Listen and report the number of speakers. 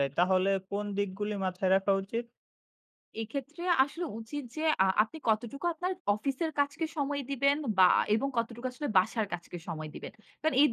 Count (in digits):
2